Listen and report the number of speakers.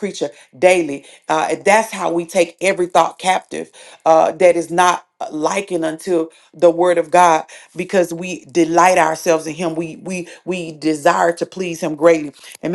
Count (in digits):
1